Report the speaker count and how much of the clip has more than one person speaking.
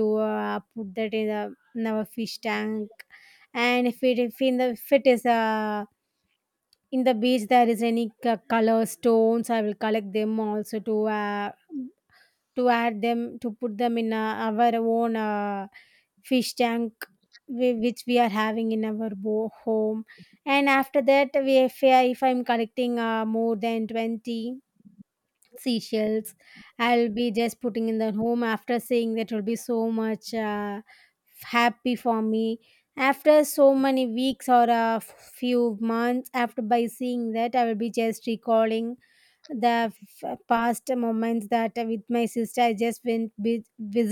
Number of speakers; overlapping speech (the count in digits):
1, no overlap